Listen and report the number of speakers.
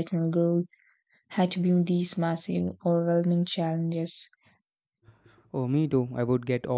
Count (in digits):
2